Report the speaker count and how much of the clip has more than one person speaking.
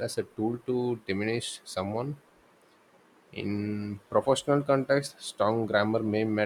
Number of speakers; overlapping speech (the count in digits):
1, no overlap